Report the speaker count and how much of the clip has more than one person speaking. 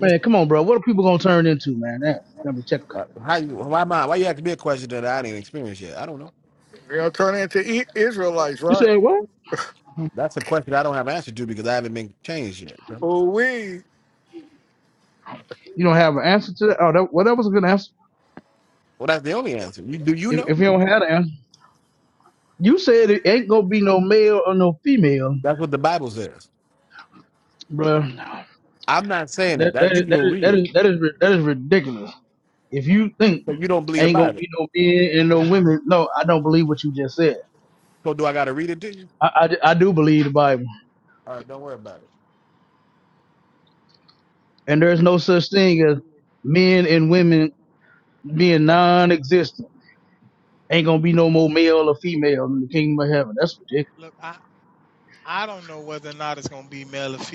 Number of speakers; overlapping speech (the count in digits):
4, about 3%